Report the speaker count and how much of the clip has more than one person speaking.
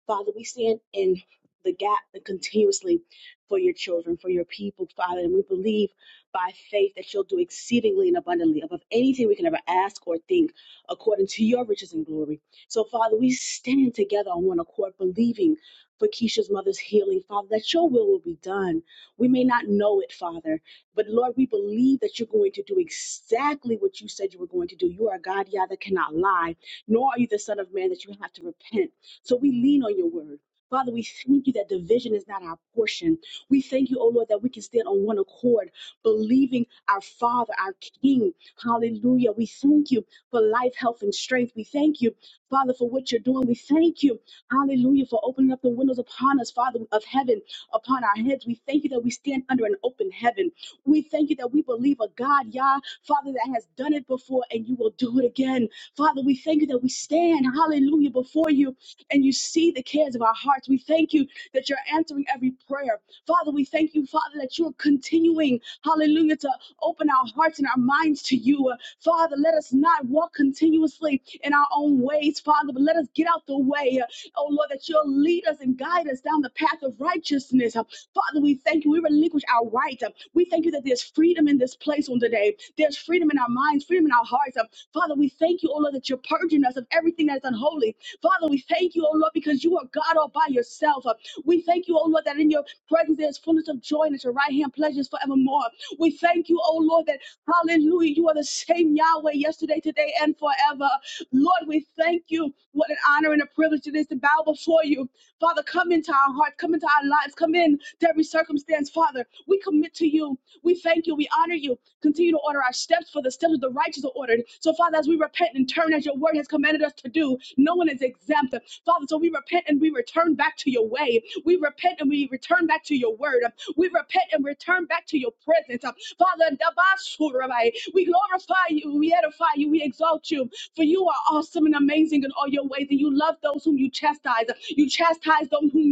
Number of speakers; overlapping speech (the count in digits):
1, no overlap